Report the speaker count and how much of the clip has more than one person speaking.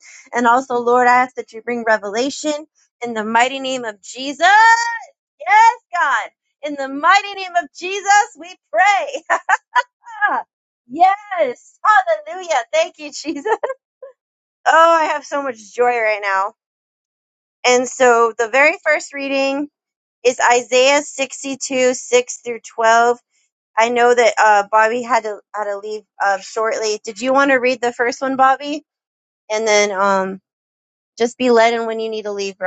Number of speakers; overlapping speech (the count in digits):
1, no overlap